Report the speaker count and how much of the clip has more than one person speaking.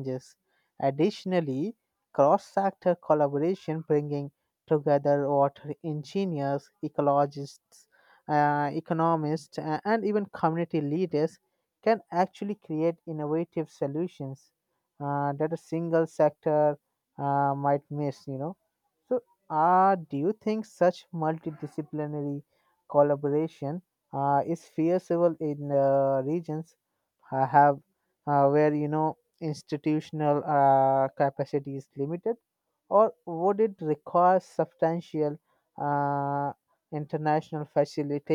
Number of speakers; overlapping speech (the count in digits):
1, no overlap